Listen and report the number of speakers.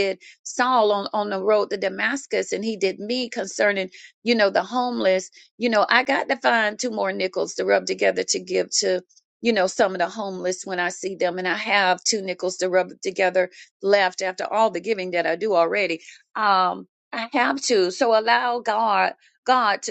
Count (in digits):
1